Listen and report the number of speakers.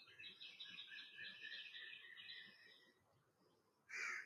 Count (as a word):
zero